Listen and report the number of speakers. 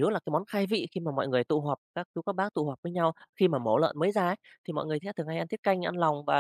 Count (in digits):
1